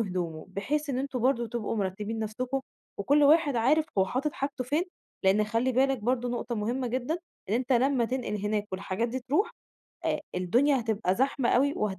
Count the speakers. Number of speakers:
1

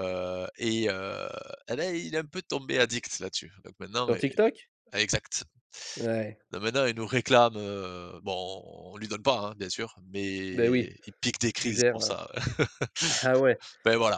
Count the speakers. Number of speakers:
2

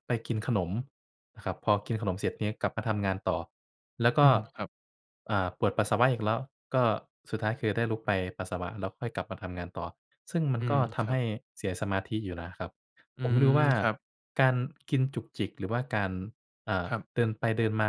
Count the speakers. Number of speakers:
2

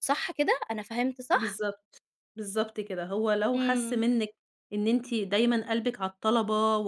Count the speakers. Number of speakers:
2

